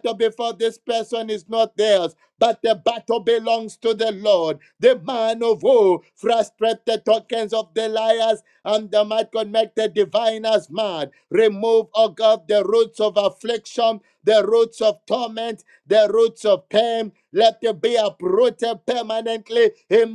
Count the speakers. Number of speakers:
one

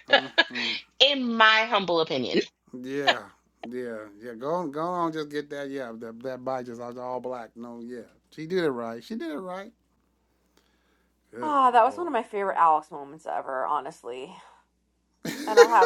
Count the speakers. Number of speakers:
three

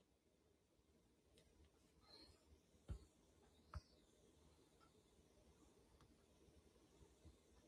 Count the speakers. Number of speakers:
zero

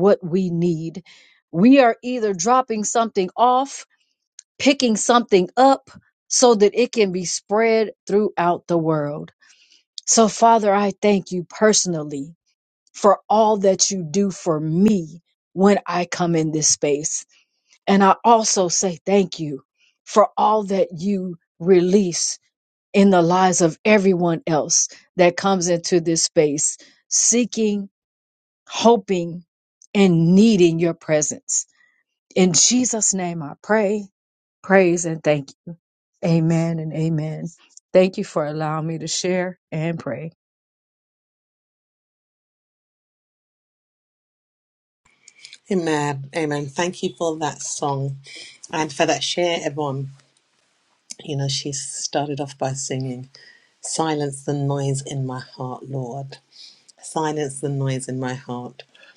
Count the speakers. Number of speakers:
two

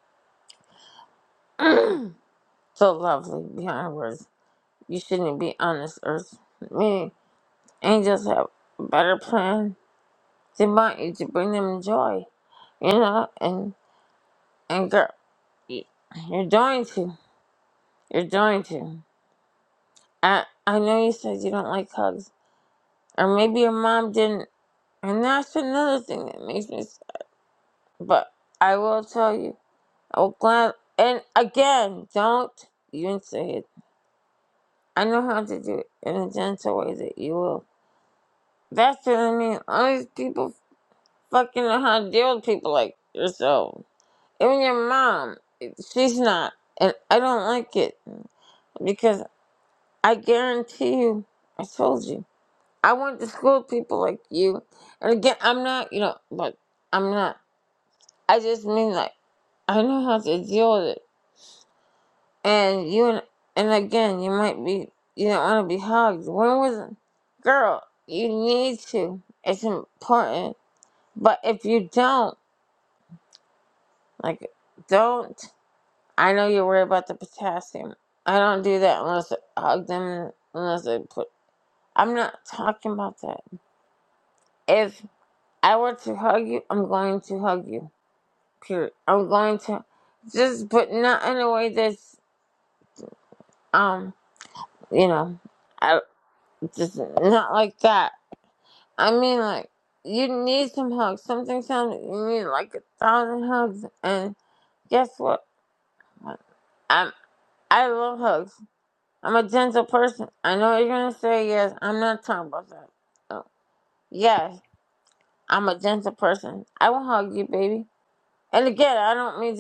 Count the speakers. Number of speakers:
one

